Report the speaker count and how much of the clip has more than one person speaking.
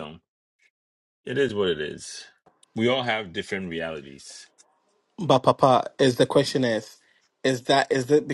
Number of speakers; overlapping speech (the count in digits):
2, no overlap